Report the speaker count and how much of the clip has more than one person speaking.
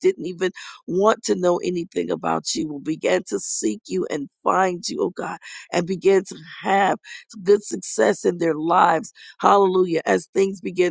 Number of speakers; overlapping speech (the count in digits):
1, no overlap